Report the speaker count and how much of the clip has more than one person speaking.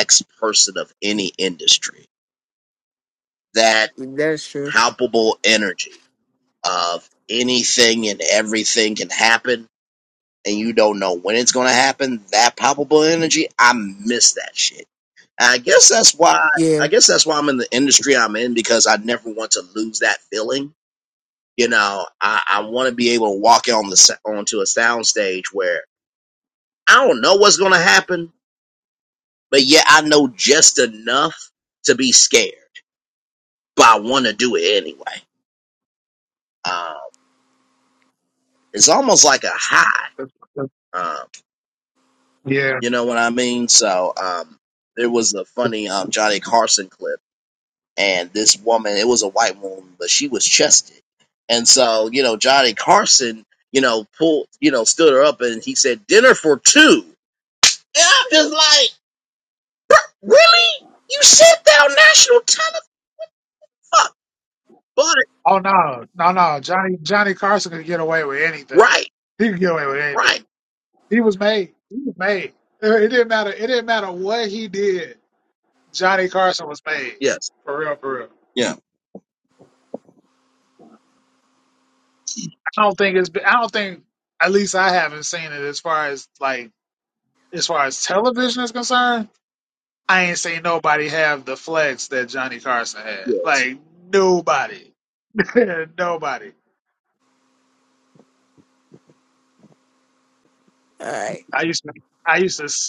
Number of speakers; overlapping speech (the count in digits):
3, about 1%